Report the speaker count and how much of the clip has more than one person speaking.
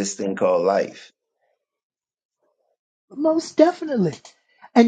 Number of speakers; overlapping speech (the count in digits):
2, no overlap